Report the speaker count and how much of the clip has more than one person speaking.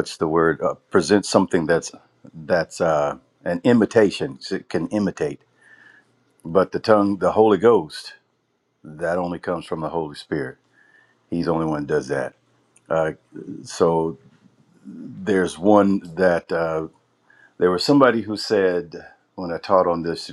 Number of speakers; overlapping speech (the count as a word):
one, no overlap